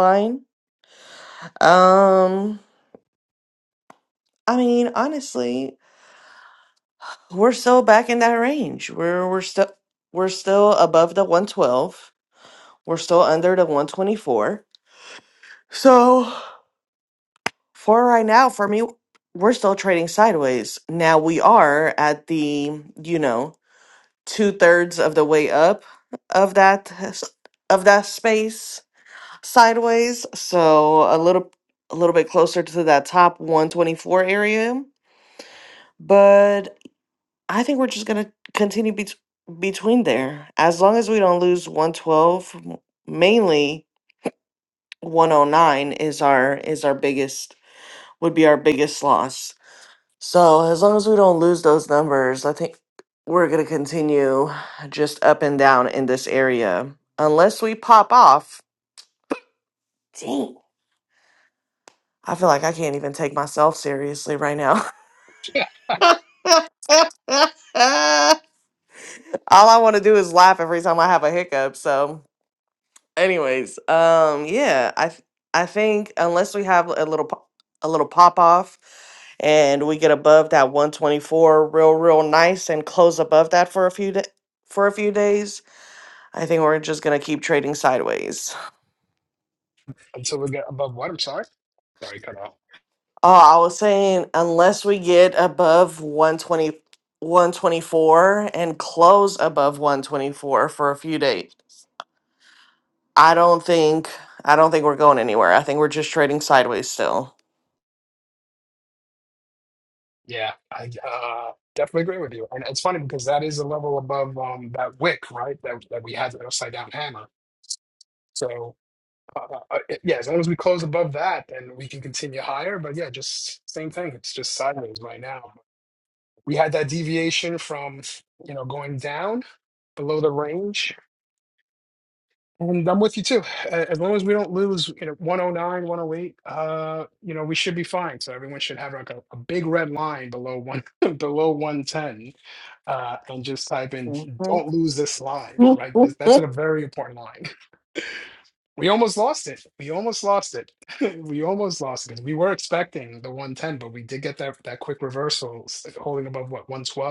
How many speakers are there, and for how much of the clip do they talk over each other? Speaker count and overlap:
2, under 1%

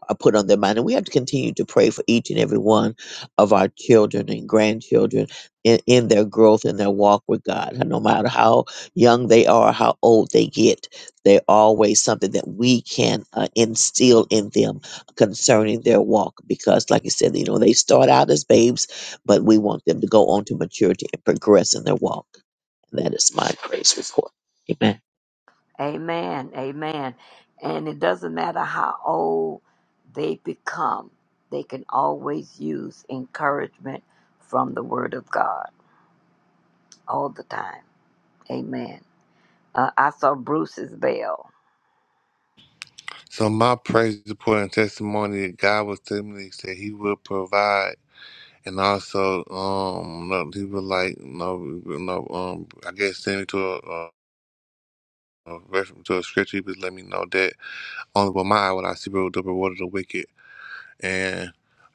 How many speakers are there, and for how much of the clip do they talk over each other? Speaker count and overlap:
3, no overlap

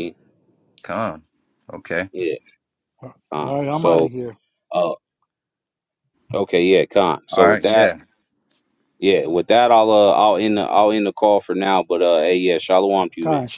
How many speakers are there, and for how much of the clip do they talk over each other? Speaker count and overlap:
3, about 8%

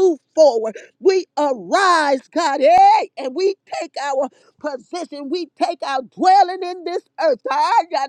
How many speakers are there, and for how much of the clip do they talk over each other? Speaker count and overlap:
1, no overlap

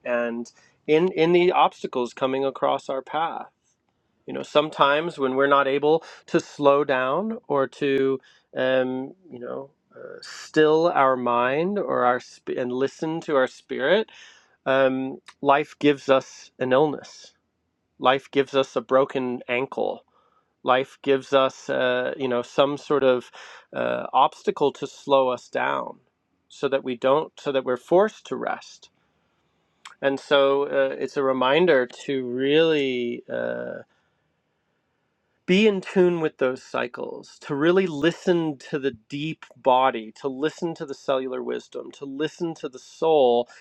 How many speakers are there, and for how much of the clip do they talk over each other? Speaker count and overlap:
1, no overlap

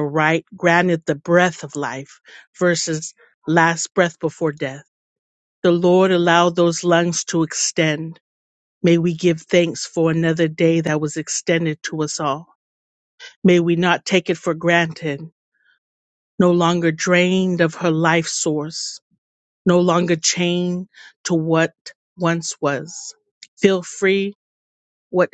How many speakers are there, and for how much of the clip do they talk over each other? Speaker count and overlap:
1, no overlap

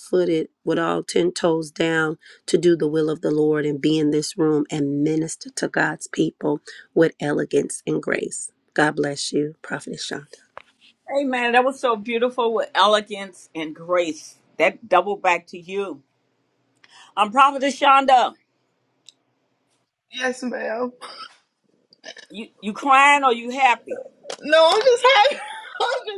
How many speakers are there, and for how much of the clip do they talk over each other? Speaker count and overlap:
3, no overlap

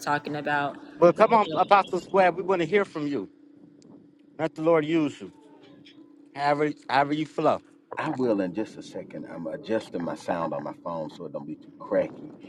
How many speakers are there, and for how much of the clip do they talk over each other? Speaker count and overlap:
3, about 2%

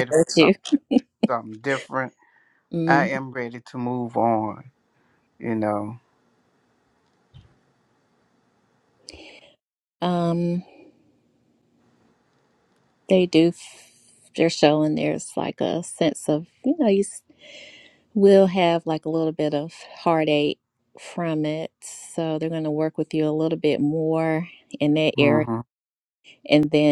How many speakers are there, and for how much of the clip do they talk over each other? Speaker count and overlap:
2, about 3%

